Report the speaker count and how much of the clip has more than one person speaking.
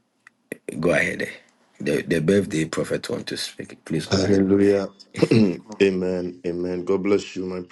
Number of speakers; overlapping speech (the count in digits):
2, about 5%